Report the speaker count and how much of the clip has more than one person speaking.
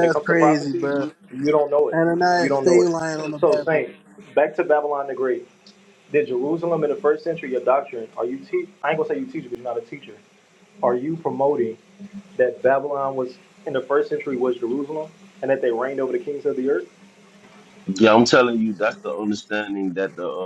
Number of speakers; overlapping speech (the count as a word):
three, about 10%